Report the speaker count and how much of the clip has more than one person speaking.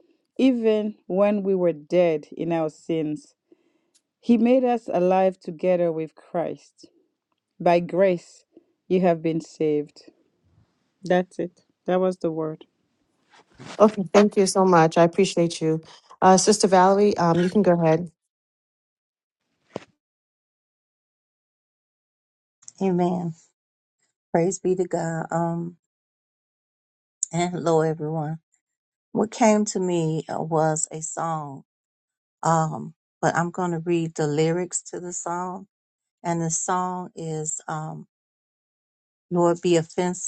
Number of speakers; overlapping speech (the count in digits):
3, no overlap